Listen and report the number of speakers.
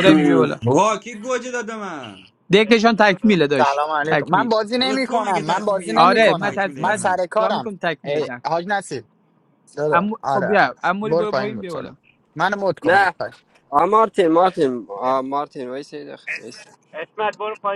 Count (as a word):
five